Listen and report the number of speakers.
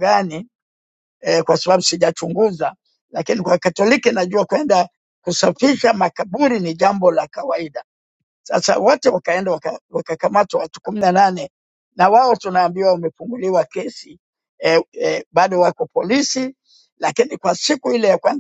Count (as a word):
one